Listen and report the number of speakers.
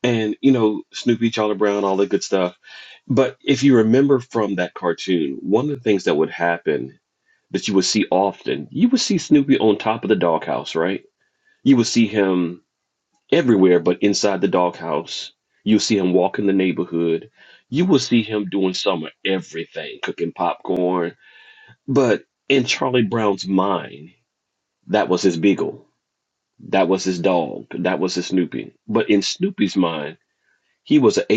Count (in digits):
1